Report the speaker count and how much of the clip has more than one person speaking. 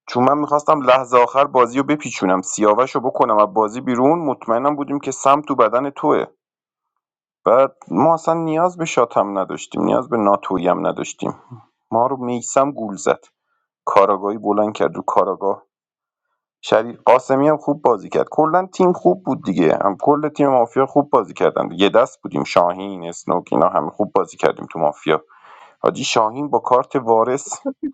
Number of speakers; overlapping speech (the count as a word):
one, no overlap